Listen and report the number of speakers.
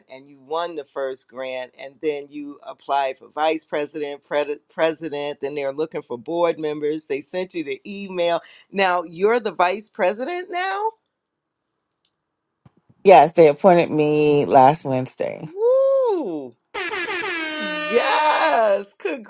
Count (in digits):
2